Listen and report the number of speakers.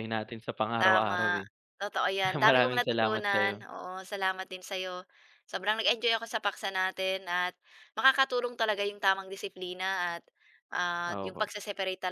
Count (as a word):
two